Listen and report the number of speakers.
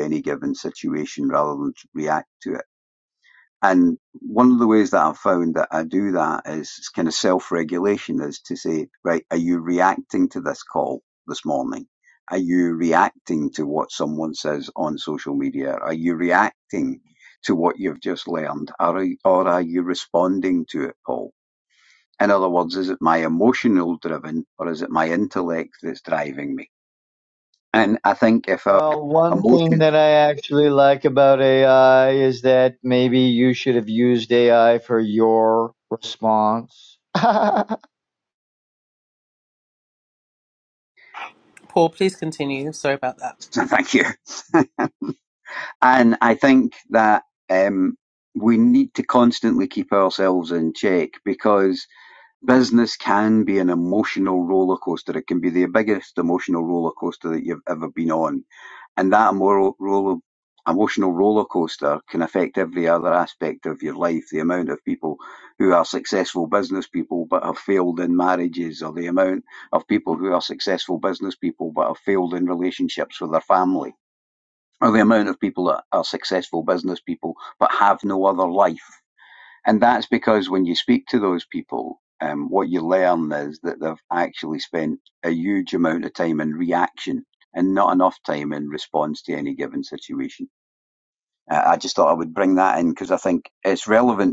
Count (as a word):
three